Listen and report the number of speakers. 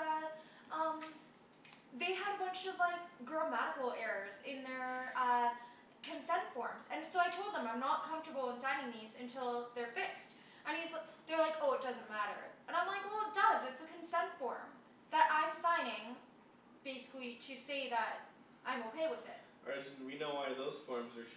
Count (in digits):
2